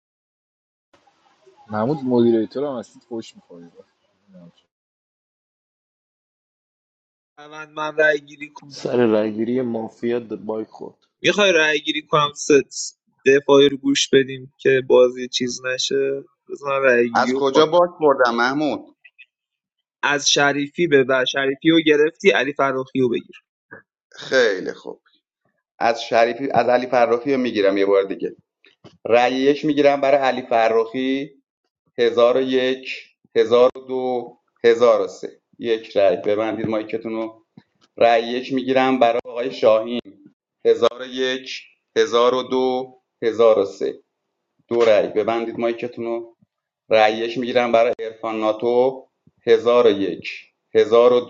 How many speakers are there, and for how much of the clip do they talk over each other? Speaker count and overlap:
4, about 1%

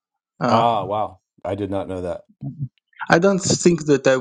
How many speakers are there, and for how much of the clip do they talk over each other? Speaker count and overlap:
2, about 6%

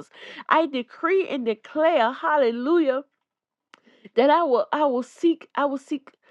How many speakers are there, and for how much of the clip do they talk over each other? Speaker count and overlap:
1, no overlap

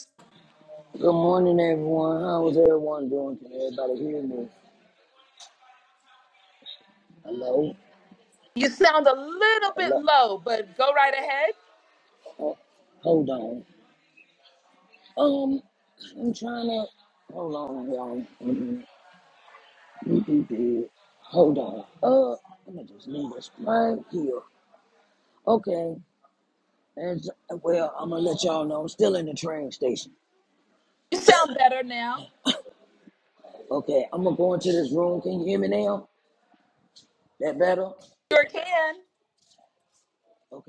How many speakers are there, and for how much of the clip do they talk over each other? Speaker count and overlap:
2, about 1%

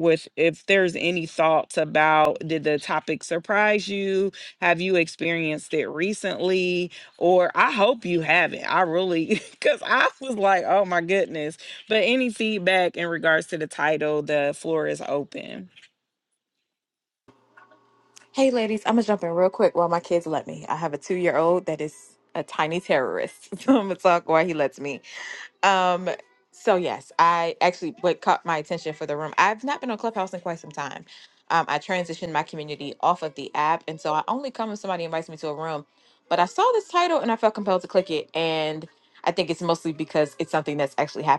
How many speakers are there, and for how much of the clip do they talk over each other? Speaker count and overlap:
2, no overlap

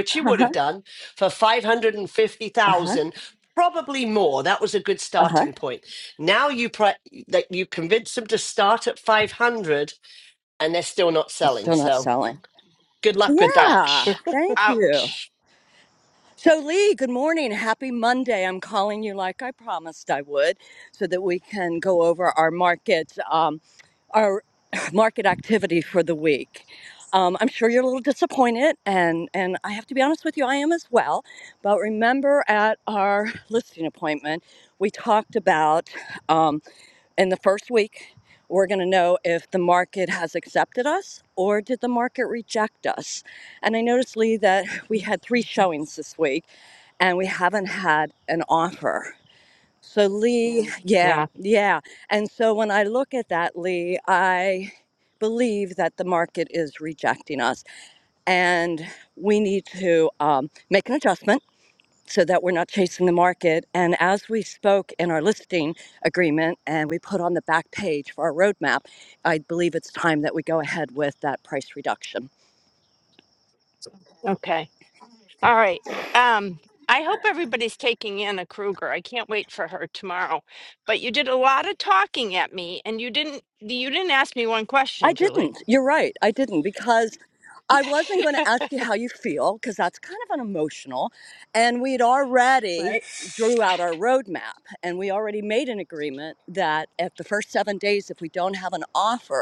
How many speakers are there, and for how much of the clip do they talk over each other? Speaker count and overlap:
3, about 4%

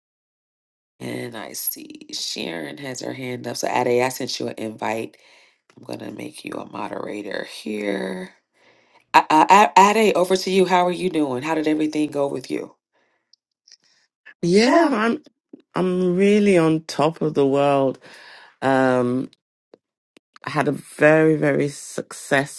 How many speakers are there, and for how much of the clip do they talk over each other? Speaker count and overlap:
2, no overlap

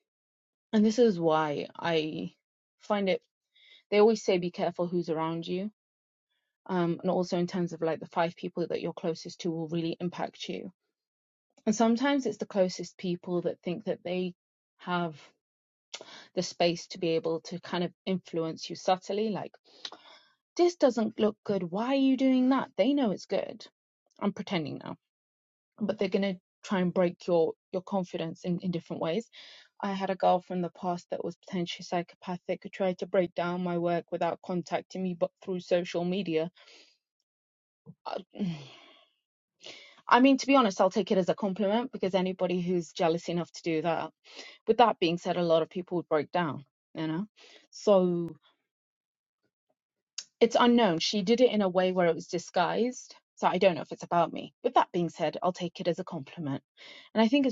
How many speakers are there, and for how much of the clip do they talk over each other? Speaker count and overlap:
1, no overlap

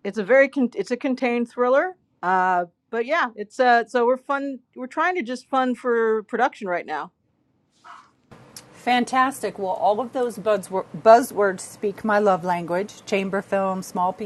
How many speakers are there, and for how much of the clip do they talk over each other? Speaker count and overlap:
2, no overlap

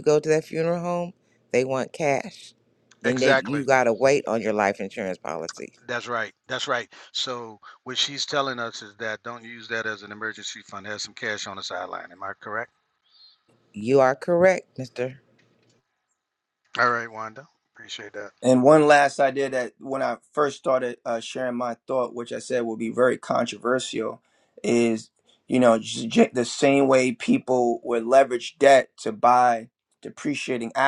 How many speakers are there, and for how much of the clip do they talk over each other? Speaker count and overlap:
3, about 2%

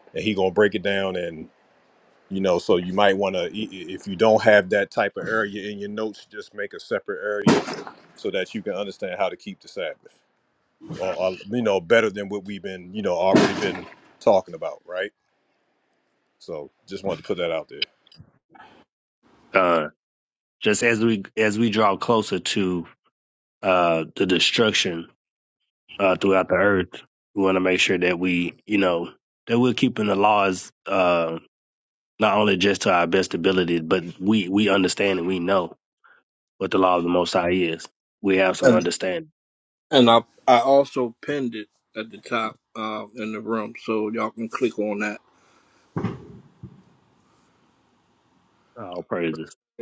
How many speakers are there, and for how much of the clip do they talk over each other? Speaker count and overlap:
3, under 1%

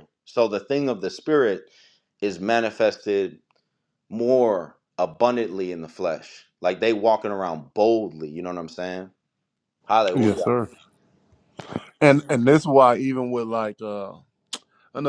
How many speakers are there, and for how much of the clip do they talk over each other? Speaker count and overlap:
2, about 3%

